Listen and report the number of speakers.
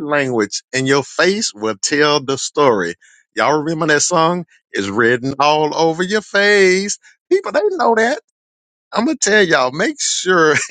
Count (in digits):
1